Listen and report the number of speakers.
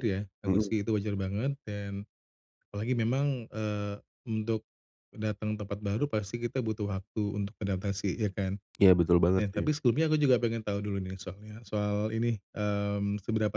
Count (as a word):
two